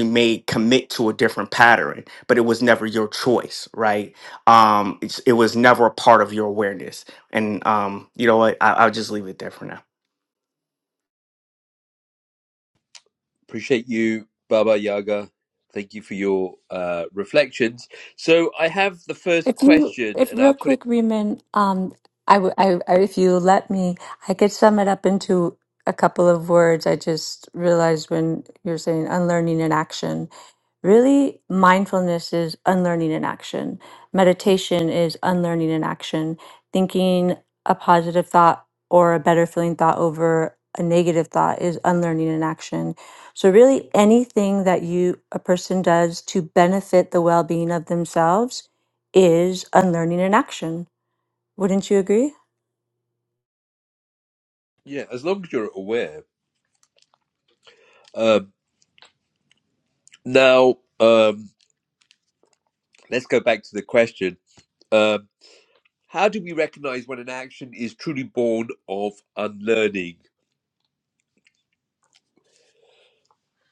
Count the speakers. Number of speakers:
3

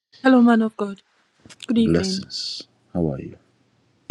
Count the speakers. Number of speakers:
2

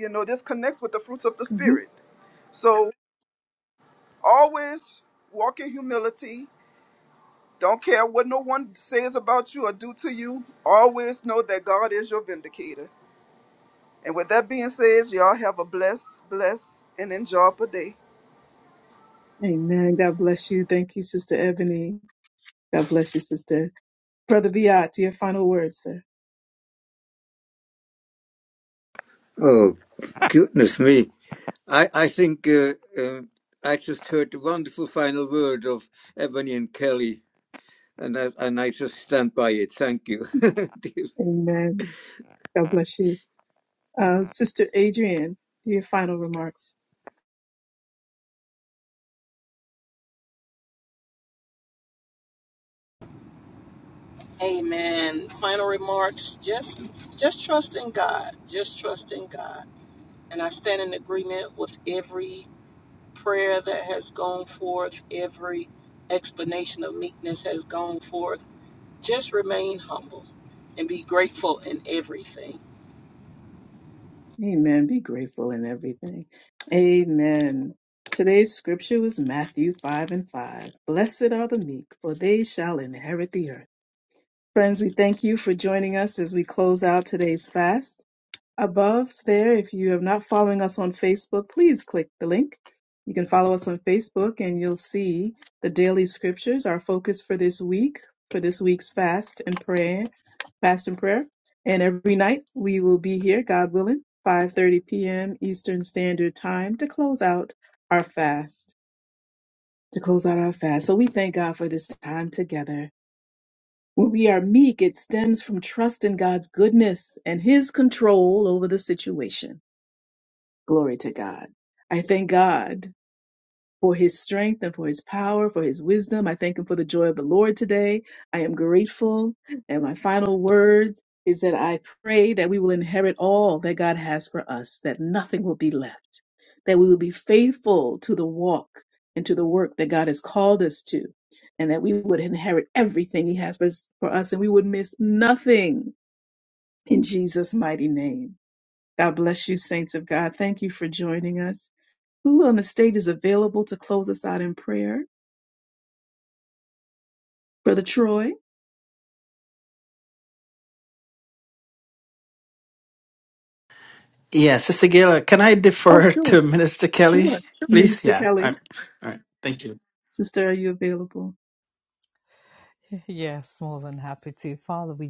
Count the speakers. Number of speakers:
6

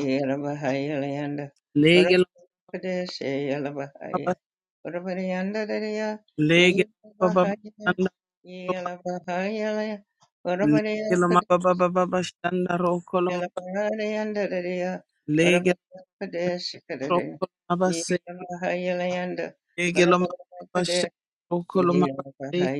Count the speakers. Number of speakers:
2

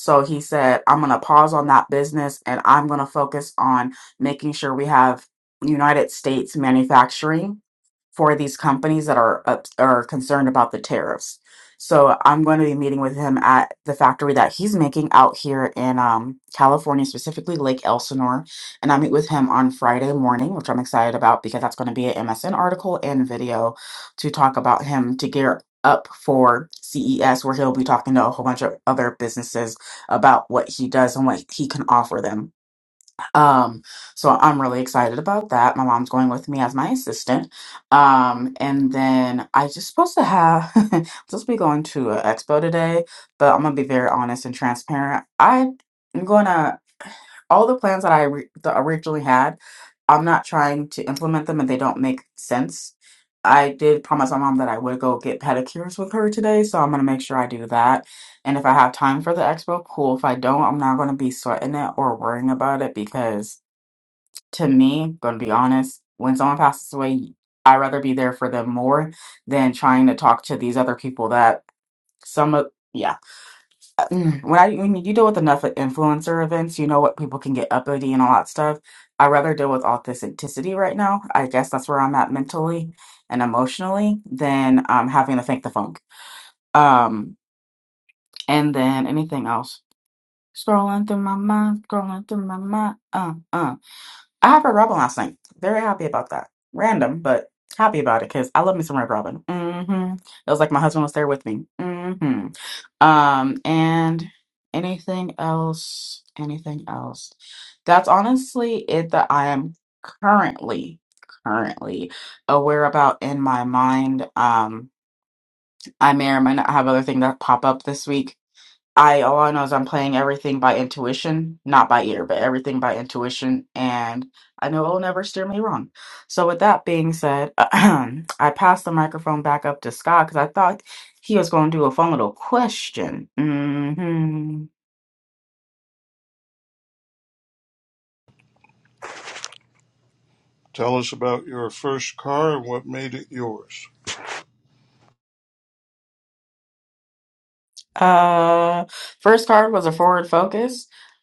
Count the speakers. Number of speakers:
2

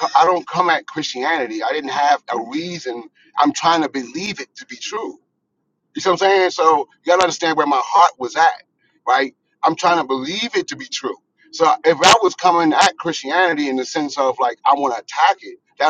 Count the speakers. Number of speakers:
1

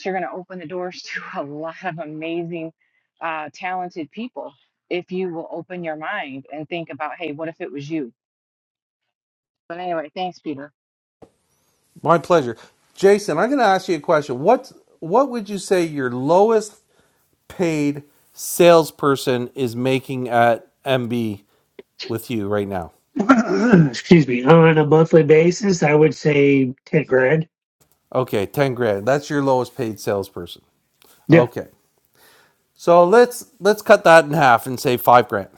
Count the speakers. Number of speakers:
3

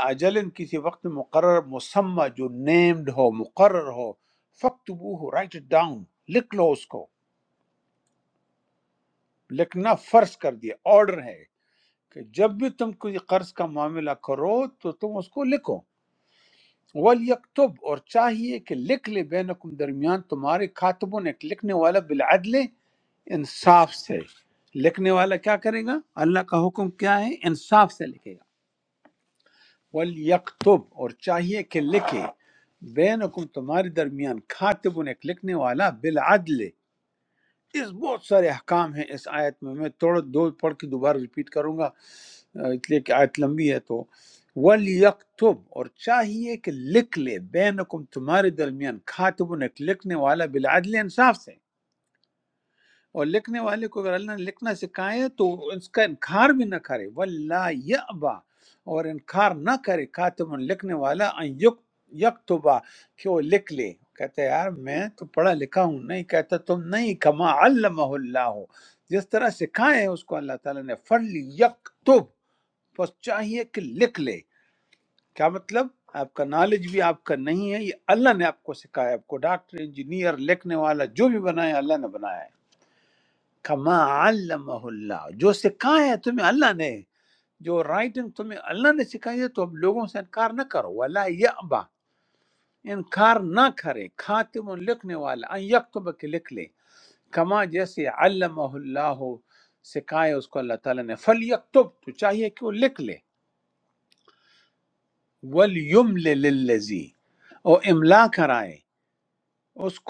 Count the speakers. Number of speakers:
1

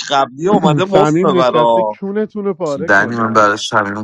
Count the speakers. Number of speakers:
3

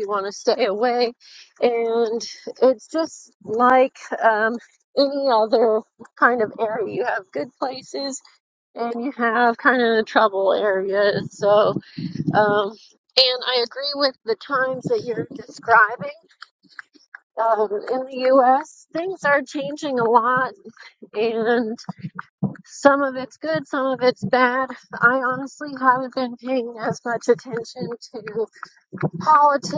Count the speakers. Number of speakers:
1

